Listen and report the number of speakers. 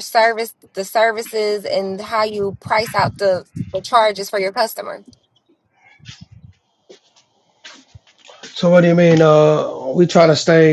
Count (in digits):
2